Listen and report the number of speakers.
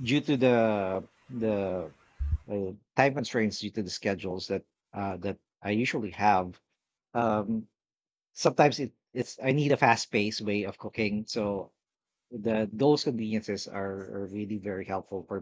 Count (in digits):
1